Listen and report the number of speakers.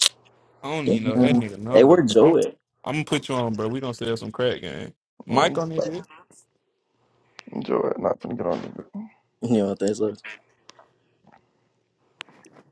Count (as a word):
three